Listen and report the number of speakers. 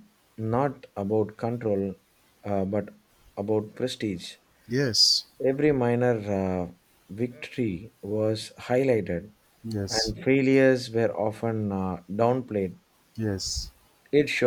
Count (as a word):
two